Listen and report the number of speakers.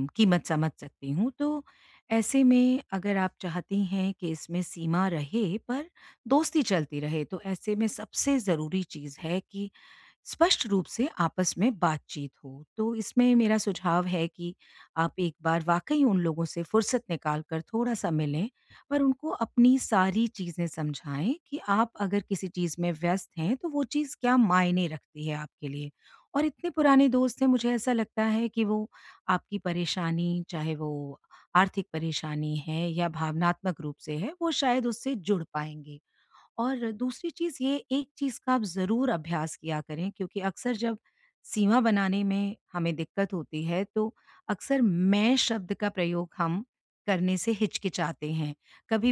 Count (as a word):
one